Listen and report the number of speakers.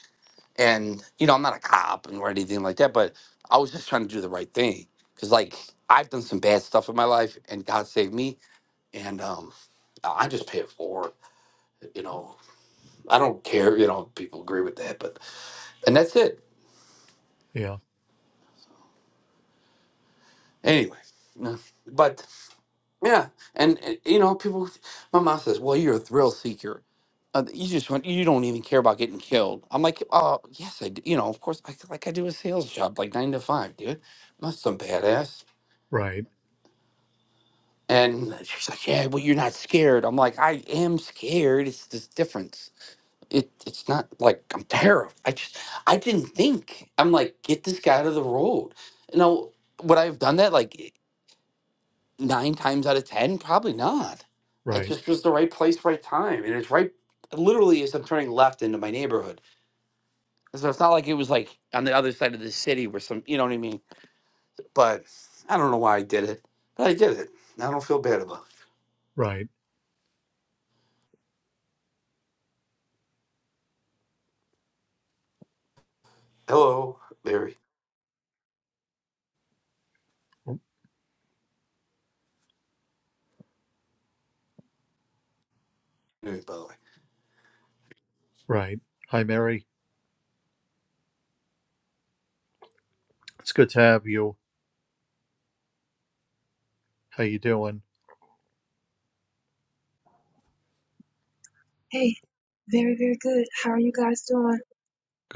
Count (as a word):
three